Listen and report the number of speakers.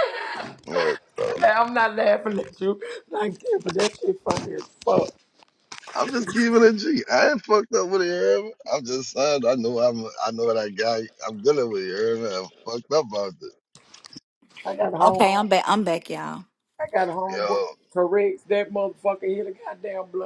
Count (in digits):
3